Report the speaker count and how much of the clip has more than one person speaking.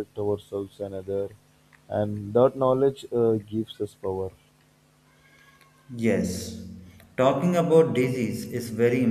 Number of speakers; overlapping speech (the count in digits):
2, no overlap